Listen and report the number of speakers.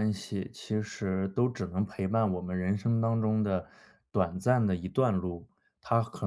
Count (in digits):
1